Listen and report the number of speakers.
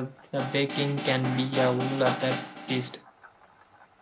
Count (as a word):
one